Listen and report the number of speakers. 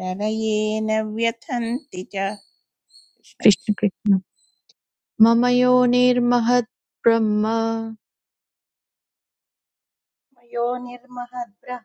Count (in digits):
3